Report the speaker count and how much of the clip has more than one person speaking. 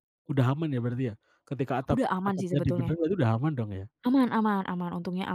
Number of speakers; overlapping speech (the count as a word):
two, about 19%